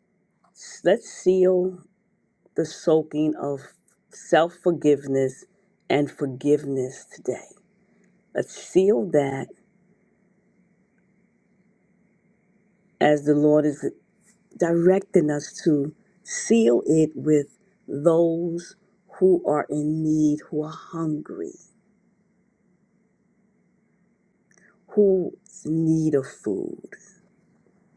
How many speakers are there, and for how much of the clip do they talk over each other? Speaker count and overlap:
1, no overlap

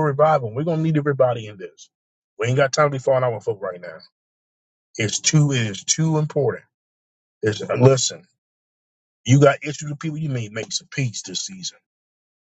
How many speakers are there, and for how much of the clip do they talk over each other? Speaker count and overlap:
1, no overlap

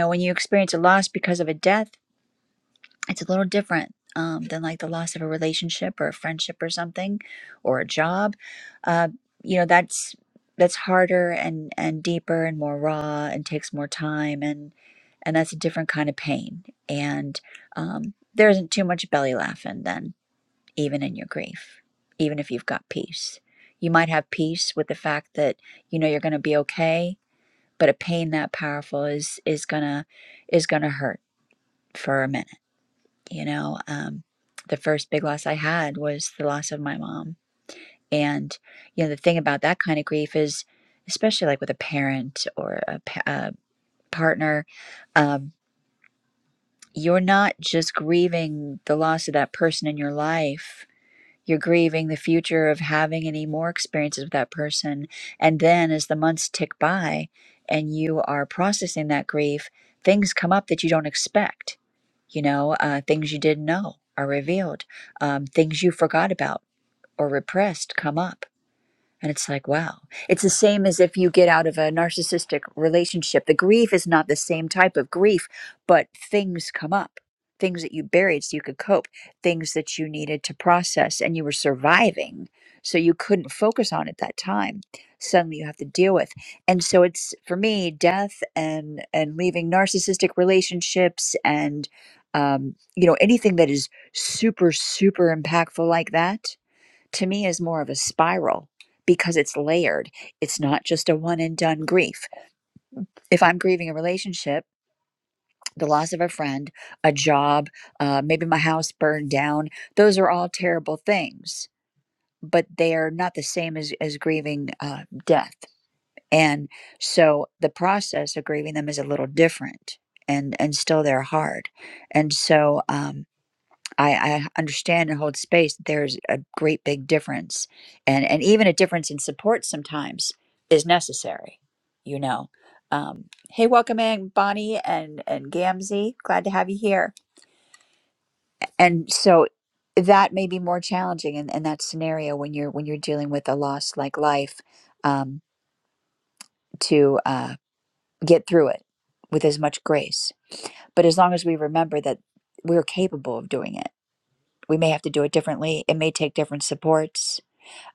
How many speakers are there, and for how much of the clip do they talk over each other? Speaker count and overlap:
1, no overlap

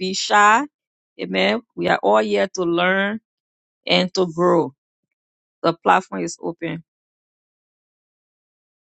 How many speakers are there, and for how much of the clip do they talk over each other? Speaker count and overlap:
1, no overlap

